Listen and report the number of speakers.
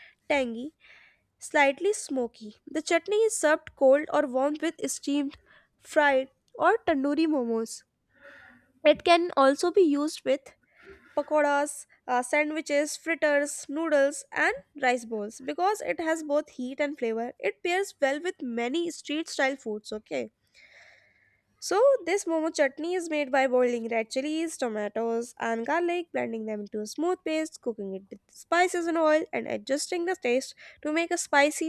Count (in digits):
1